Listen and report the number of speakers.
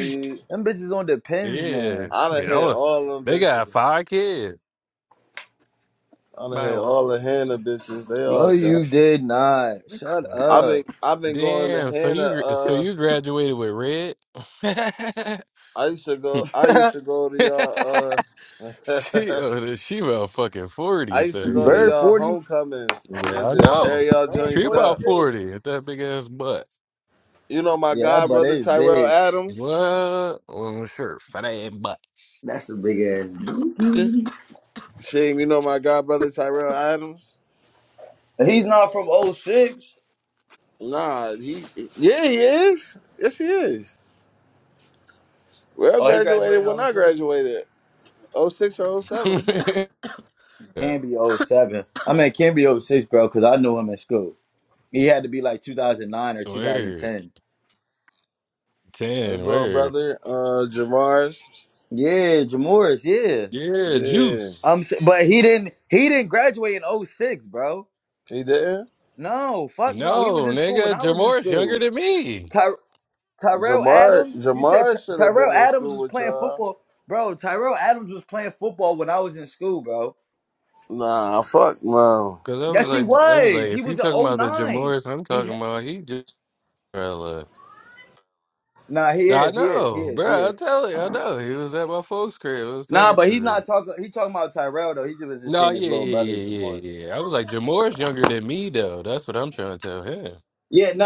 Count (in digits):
3